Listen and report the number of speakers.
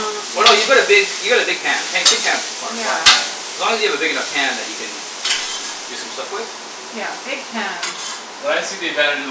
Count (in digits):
3